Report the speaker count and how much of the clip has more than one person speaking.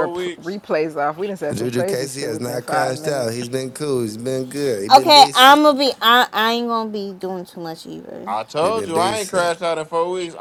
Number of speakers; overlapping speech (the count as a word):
four, about 36%